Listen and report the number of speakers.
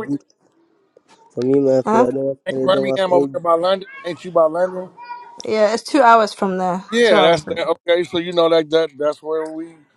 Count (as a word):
three